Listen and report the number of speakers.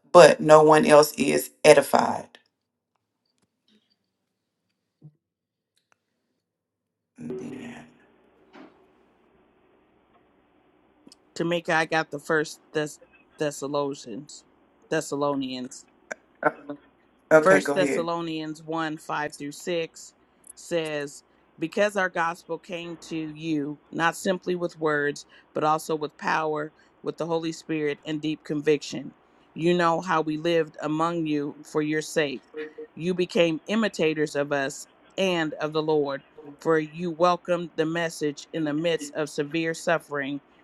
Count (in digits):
2